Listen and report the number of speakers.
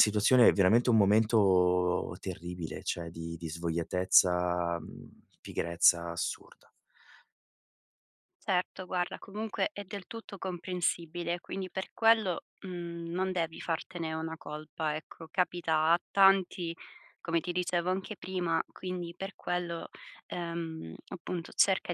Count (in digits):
2